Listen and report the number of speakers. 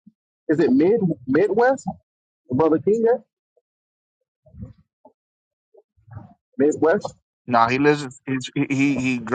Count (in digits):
2